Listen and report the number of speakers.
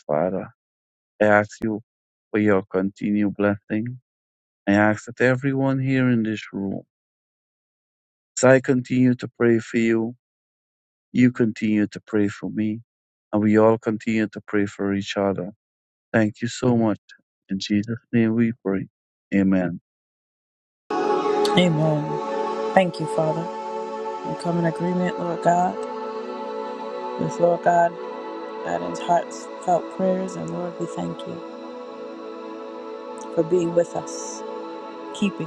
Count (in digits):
2